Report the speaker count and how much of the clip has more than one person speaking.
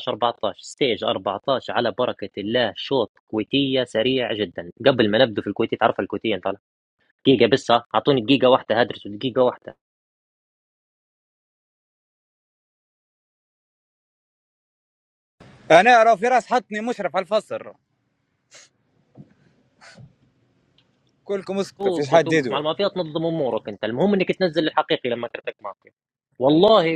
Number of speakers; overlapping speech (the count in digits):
2, about 3%